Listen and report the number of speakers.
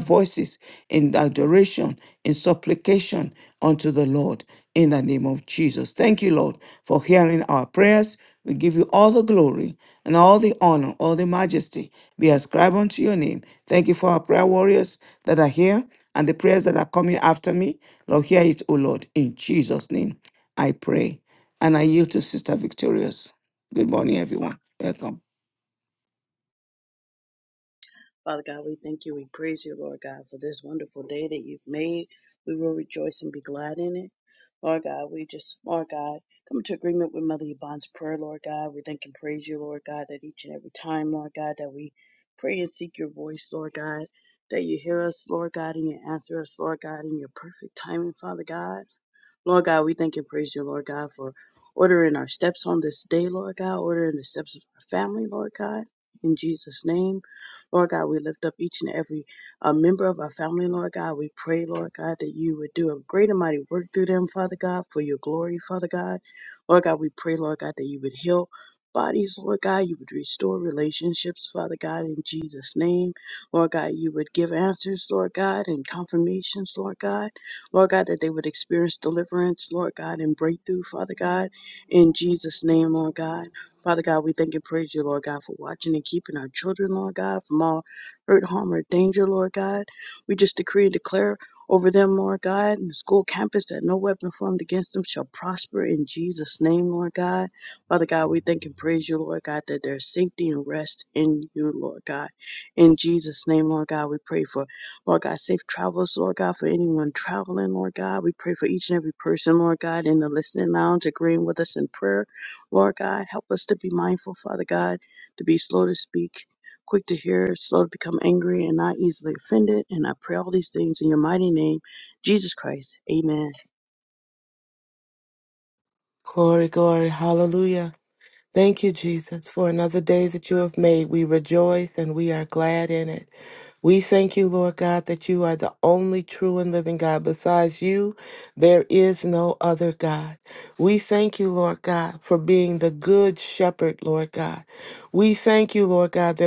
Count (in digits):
3